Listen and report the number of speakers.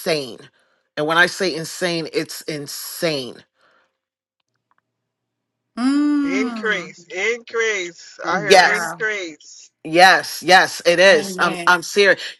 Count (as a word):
three